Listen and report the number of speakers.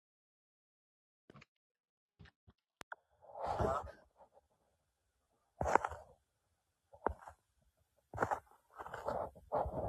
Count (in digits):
0